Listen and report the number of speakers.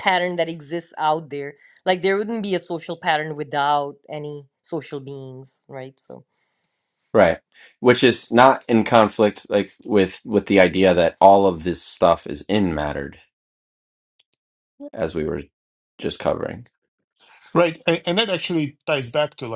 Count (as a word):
three